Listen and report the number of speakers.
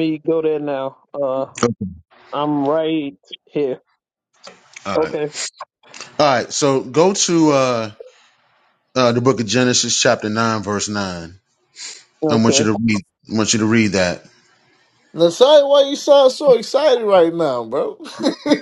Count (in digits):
3